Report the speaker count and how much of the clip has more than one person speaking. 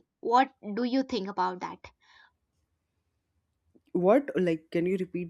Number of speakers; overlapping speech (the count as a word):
two, no overlap